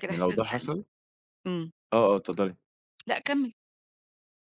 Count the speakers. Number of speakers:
2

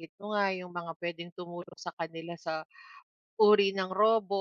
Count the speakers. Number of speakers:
1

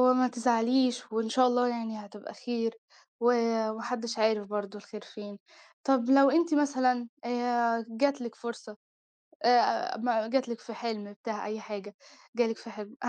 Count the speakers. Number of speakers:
1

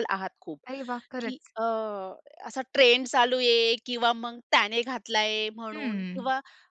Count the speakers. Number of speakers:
2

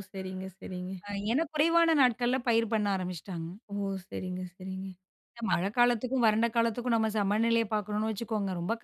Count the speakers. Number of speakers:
2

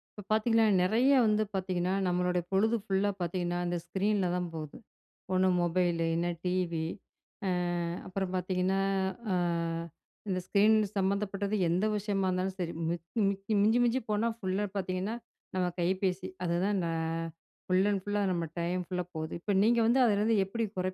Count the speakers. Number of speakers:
1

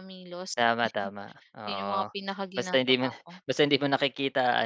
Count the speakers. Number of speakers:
2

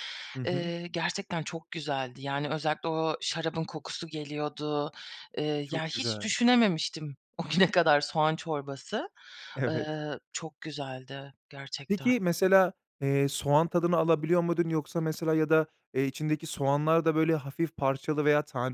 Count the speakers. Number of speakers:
2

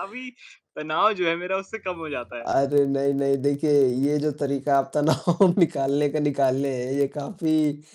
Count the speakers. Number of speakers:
2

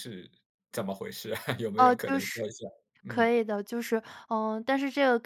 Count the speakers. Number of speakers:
2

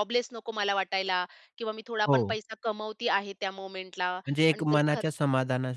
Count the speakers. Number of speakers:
2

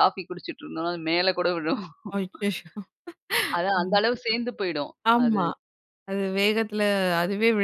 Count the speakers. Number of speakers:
2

